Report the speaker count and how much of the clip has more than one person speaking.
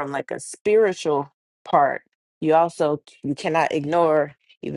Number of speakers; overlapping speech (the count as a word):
one, no overlap